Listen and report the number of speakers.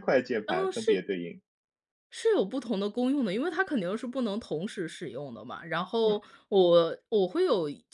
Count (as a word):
two